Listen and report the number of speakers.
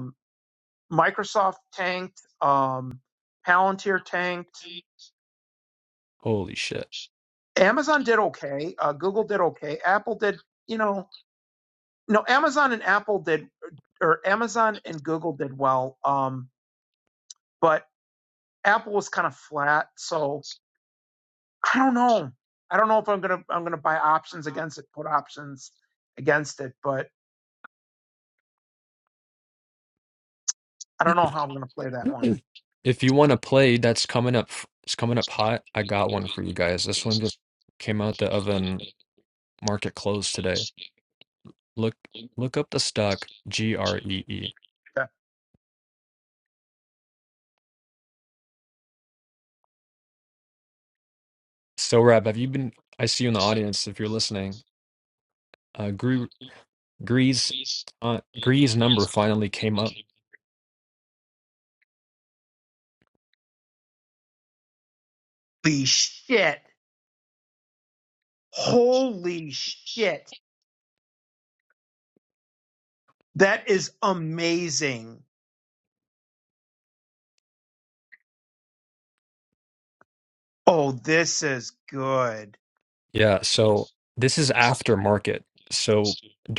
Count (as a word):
two